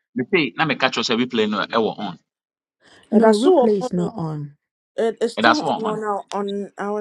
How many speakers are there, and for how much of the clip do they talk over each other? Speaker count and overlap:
3, about 23%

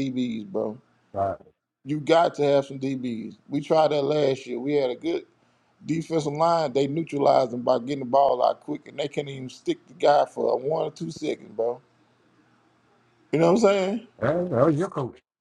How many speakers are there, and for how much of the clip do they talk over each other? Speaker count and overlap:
2, no overlap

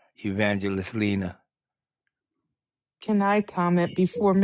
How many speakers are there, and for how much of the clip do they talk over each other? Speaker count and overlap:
2, no overlap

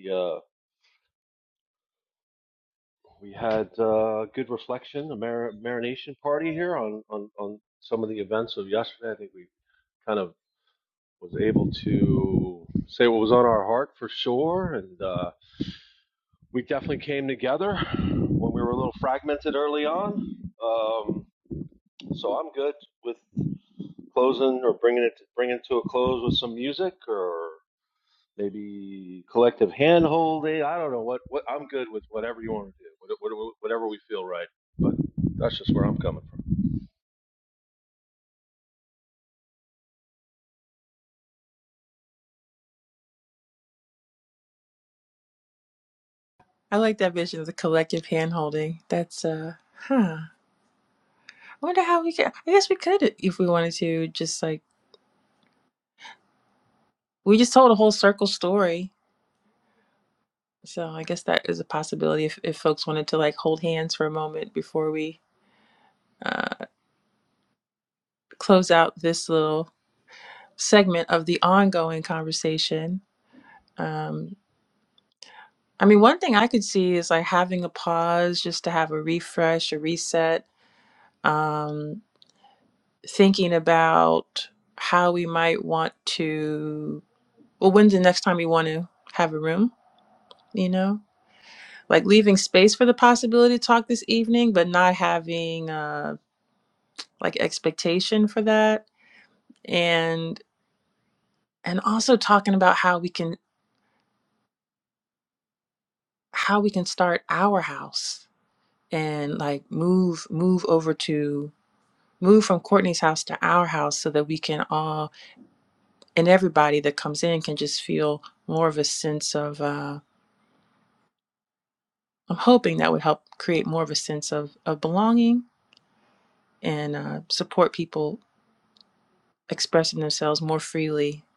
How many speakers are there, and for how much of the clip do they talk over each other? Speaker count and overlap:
2, no overlap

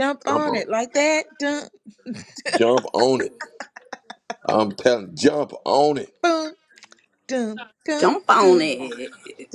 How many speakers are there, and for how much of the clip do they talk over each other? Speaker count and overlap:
3, about 11%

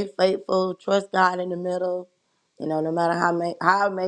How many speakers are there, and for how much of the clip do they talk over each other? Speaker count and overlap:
1, no overlap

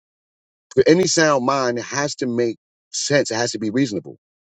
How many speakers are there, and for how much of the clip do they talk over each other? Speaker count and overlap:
1, no overlap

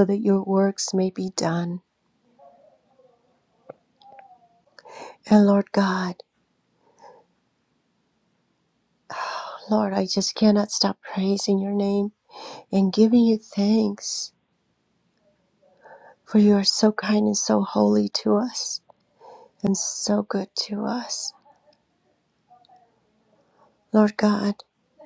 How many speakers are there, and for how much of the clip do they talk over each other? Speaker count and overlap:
1, no overlap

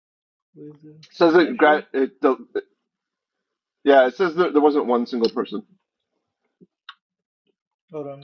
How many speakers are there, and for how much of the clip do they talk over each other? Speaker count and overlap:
2, about 6%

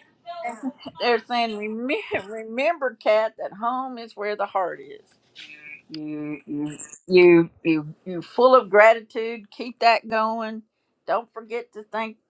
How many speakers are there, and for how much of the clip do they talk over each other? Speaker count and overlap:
1, no overlap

